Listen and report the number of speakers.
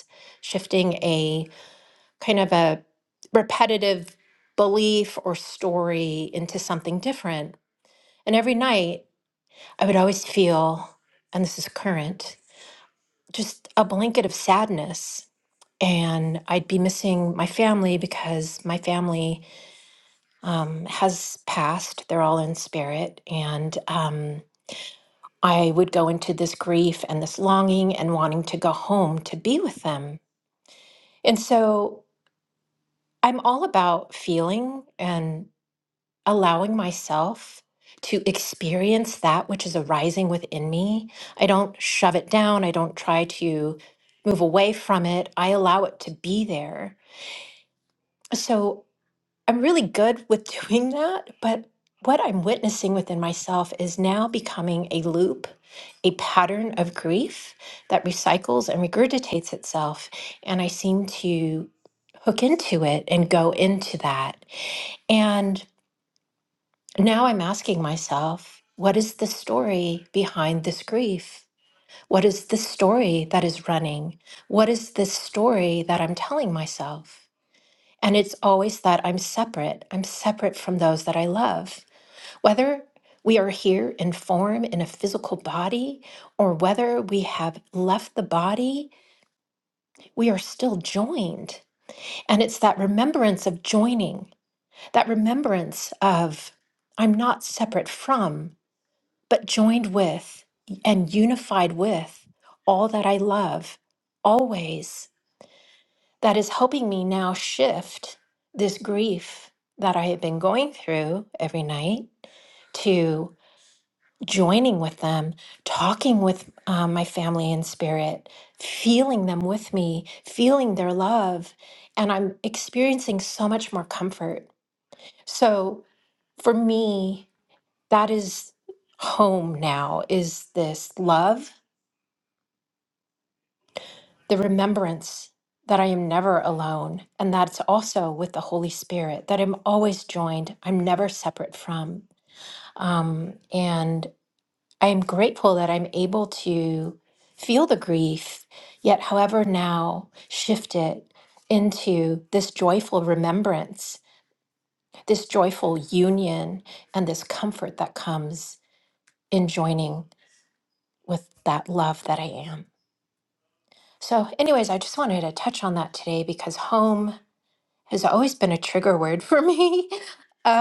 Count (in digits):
1